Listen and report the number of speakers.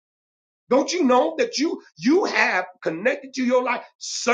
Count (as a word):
one